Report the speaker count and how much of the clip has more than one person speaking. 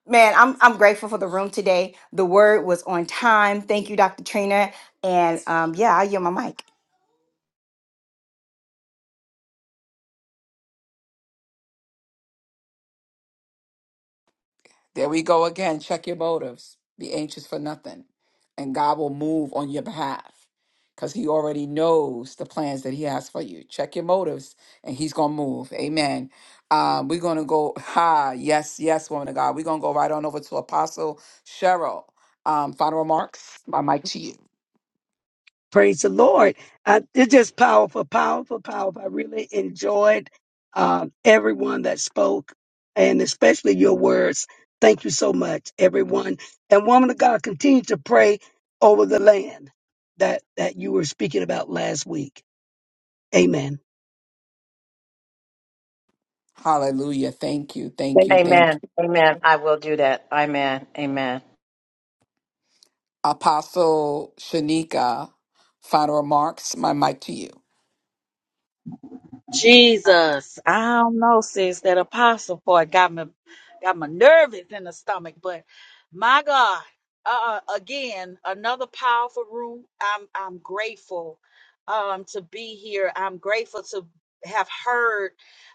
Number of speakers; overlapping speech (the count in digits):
5, about 1%